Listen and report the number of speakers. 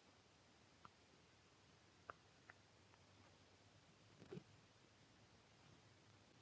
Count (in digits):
0